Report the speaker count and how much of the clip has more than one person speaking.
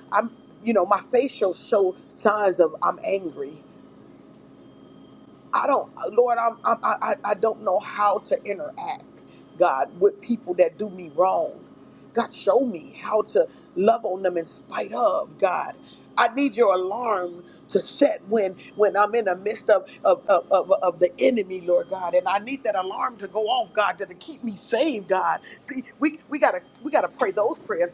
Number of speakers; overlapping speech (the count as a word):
one, no overlap